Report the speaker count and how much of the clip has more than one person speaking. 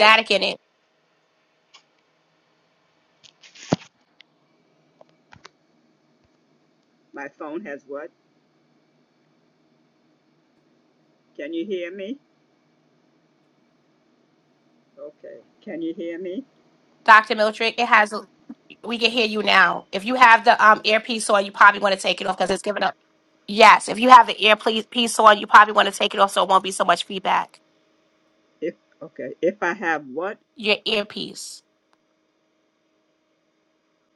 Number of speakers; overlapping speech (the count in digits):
2, under 1%